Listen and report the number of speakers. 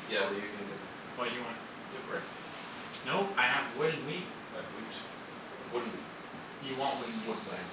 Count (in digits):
2